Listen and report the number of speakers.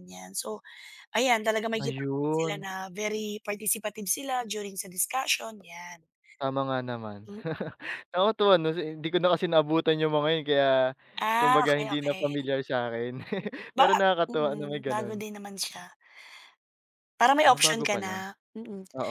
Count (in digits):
2